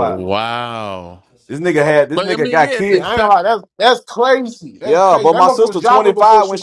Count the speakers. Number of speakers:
3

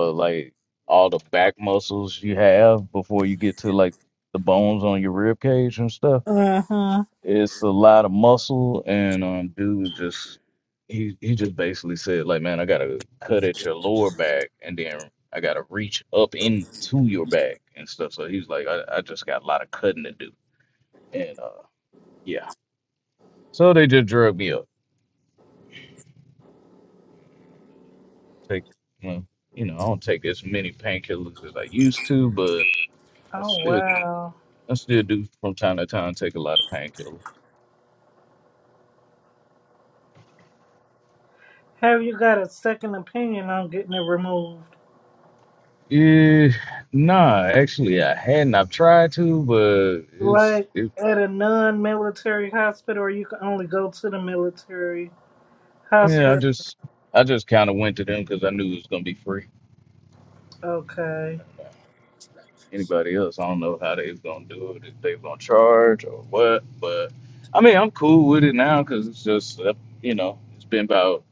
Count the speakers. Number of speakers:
2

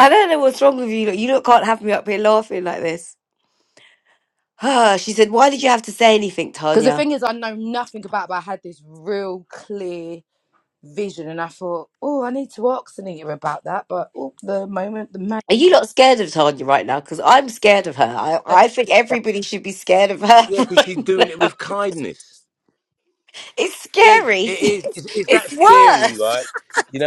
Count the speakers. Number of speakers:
3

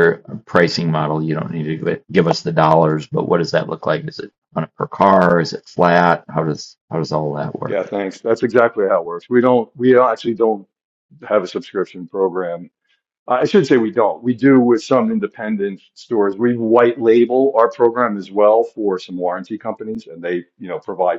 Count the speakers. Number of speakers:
2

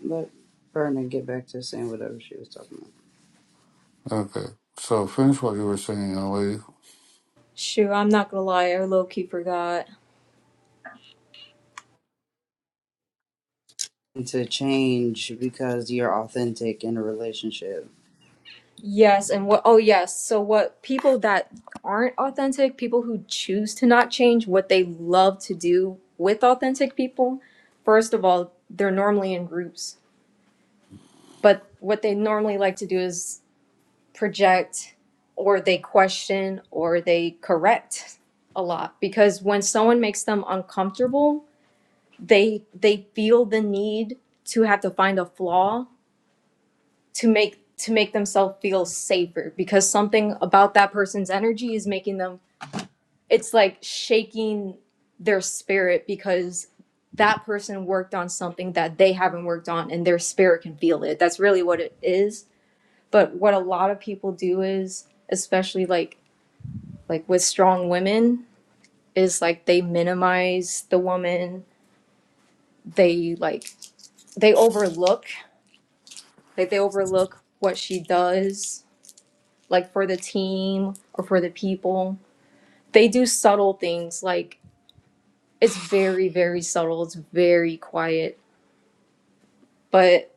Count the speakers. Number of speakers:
3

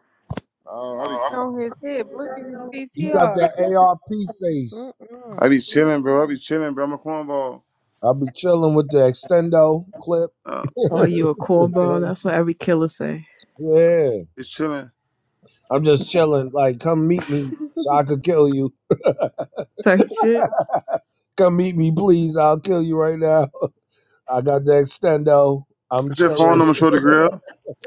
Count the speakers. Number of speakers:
4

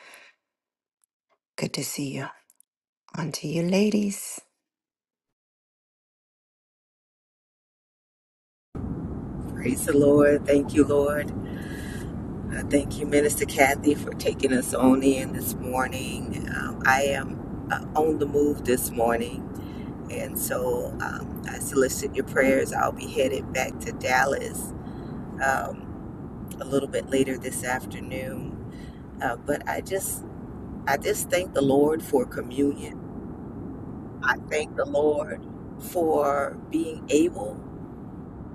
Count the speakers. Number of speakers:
2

